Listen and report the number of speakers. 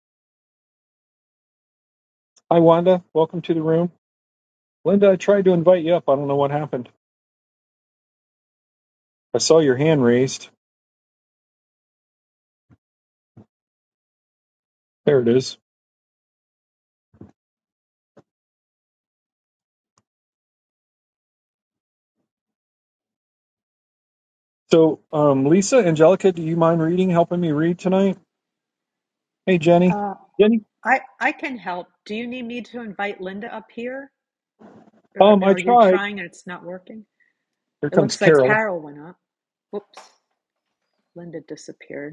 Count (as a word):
two